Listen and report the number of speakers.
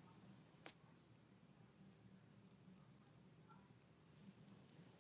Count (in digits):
0